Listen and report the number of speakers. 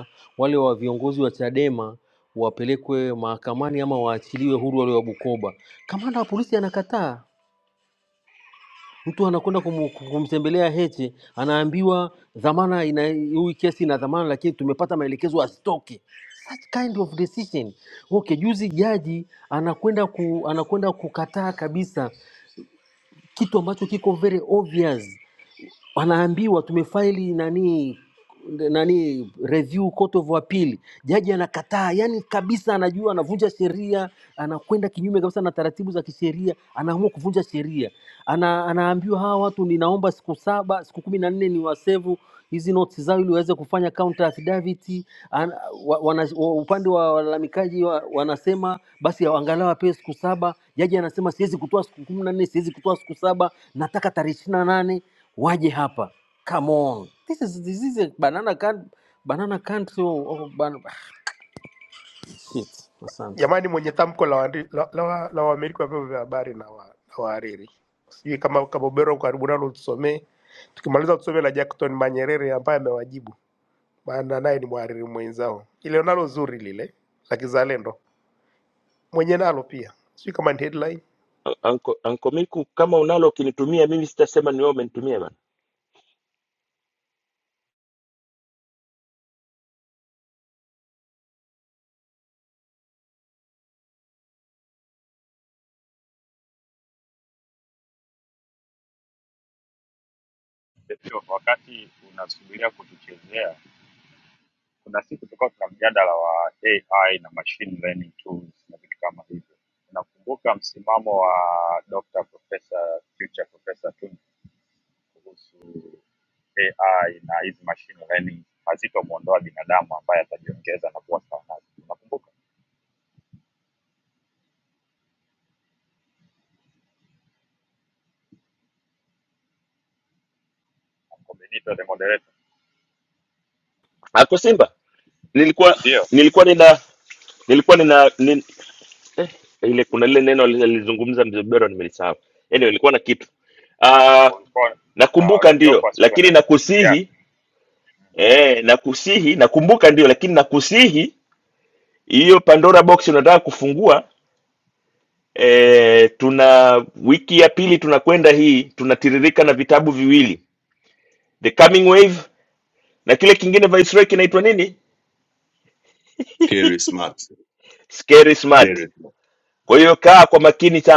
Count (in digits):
5